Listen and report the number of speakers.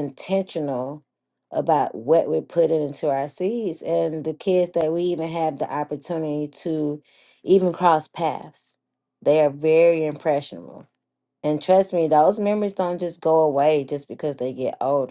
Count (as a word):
one